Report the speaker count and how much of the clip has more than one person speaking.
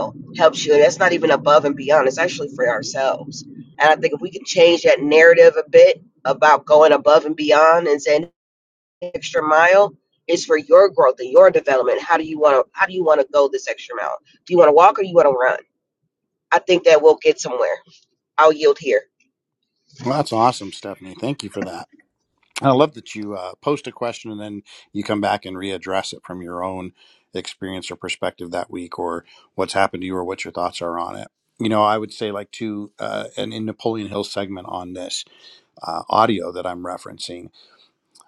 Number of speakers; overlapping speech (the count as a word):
two, no overlap